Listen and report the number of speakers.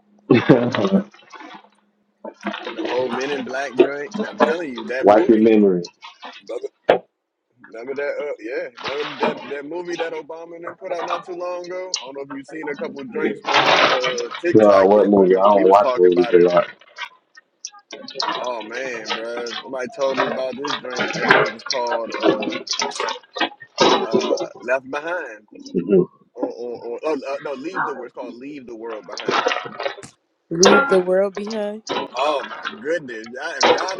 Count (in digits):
3